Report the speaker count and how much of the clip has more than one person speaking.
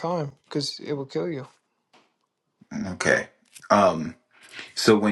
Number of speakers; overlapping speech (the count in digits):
2, no overlap